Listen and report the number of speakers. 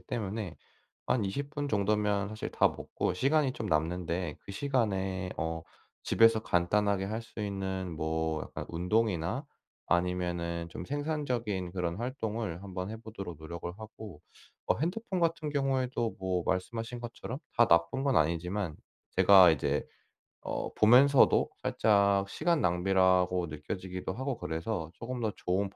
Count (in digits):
1